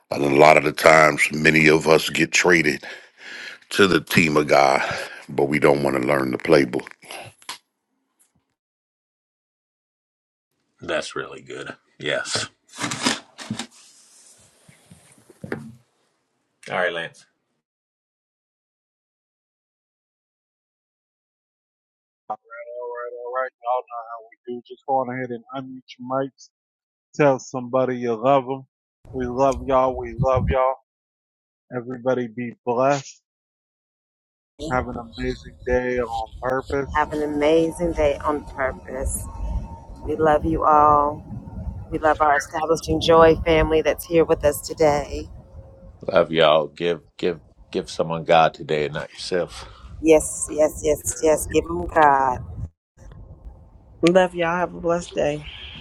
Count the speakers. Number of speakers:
five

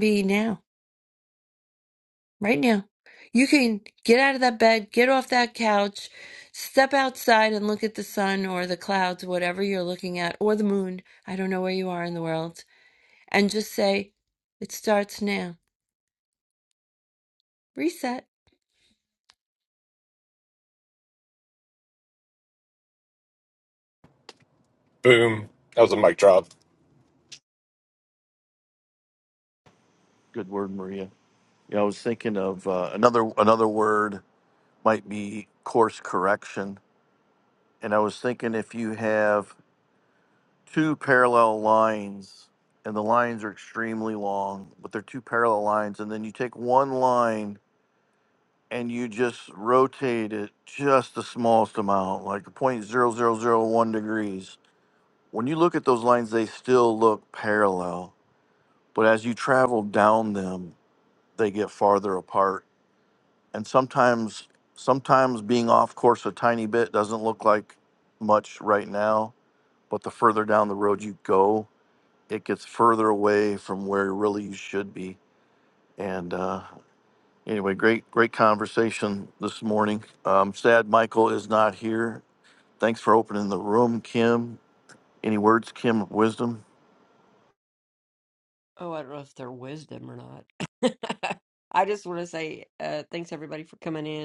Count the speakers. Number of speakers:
four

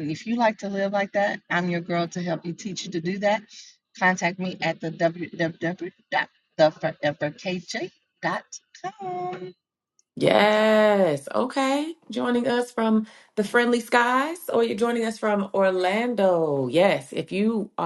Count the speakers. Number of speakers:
two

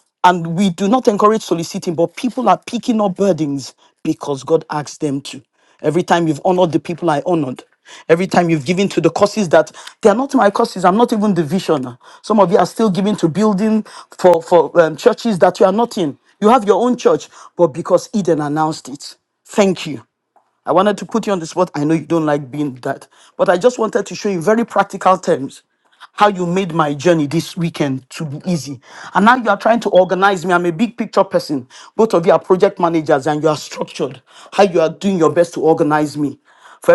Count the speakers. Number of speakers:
one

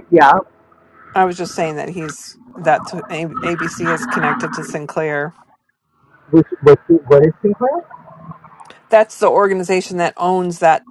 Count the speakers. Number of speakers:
two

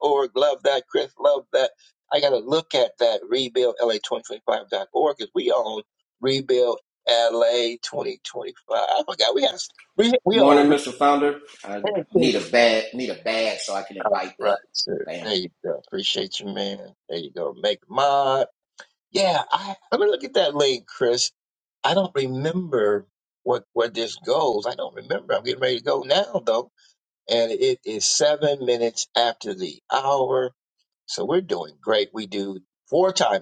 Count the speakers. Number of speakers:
two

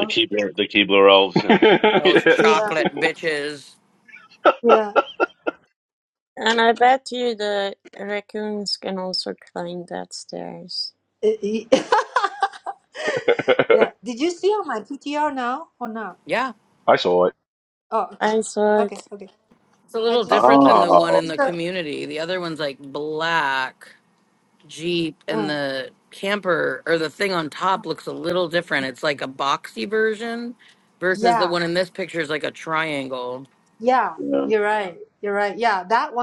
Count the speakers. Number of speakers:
five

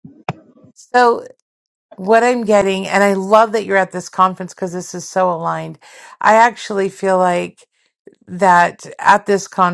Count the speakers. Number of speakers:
one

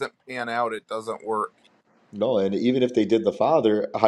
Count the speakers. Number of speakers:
two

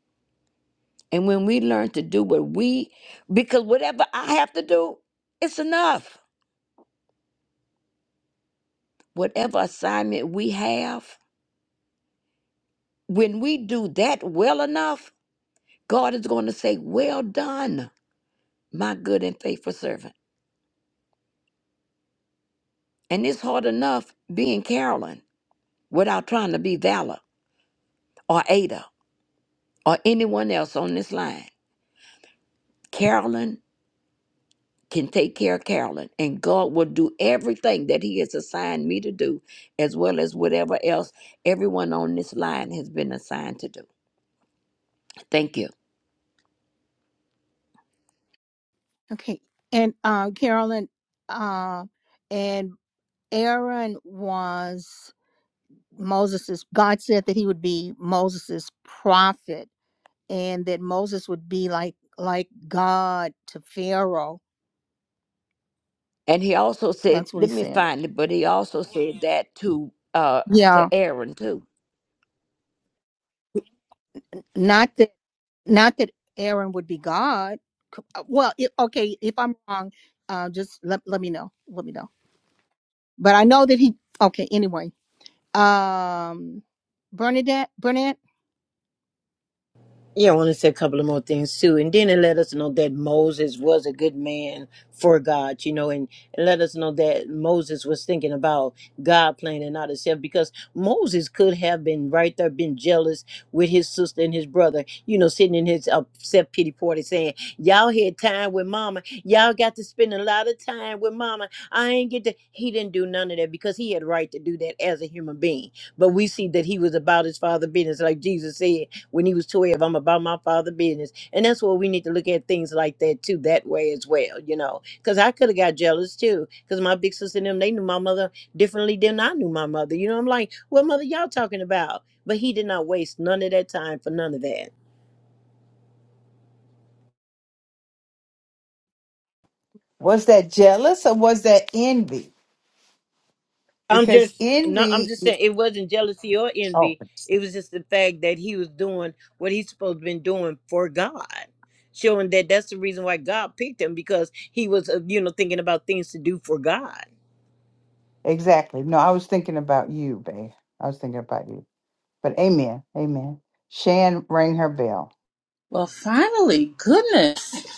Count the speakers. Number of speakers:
five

